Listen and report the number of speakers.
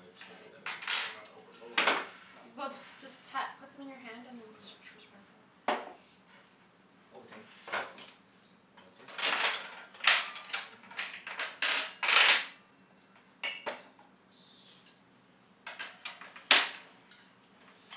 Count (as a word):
three